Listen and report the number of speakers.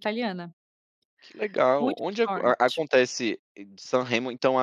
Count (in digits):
2